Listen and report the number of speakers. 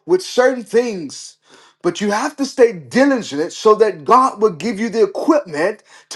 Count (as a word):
one